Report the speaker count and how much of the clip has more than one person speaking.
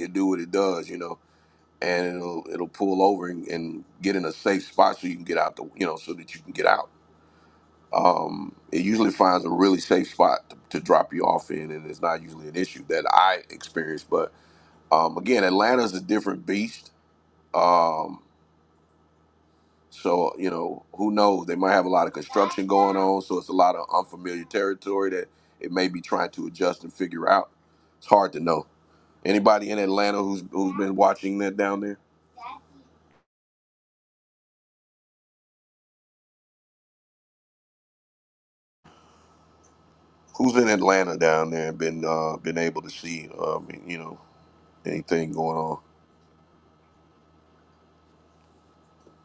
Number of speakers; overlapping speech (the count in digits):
1, no overlap